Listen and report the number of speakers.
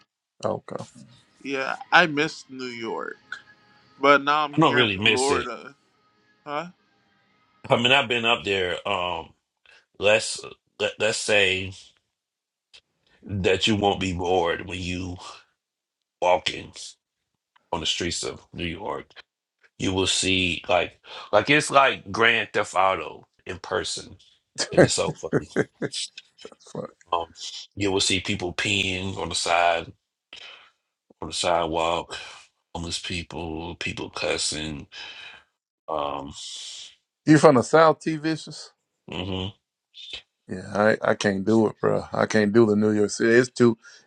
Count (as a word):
three